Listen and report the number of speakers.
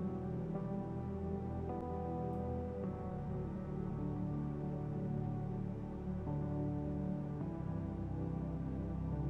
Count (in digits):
0